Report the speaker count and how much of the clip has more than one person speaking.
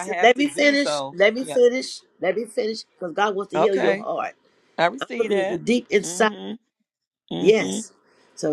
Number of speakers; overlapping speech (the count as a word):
two, about 38%